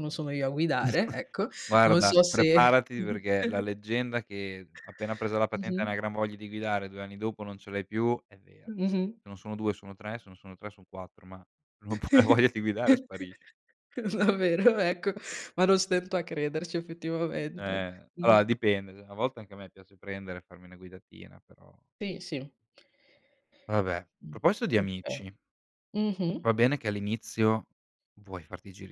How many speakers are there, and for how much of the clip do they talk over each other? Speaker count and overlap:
2, about 7%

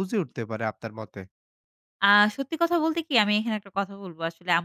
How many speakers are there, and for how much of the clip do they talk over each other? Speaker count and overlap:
2, no overlap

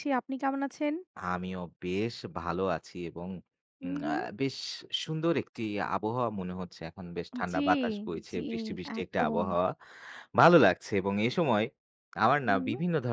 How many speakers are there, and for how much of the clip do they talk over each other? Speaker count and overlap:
2, about 11%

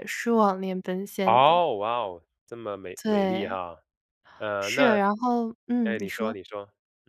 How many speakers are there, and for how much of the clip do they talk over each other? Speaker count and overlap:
2, about 25%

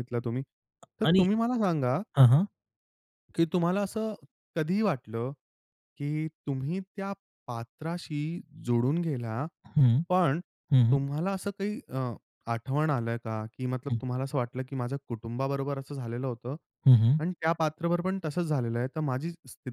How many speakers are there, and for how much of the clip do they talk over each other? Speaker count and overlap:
2, about 2%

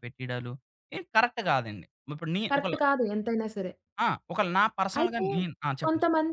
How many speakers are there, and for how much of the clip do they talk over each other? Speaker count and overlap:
2, about 13%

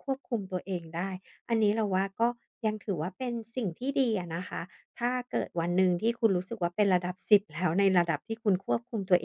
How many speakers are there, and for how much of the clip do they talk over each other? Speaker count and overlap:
1, no overlap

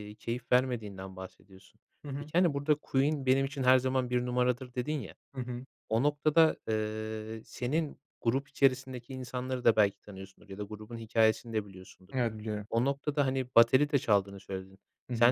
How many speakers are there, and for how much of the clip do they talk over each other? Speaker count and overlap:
2, about 1%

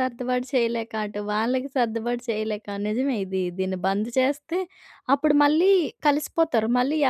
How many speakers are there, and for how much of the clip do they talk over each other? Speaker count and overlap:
1, no overlap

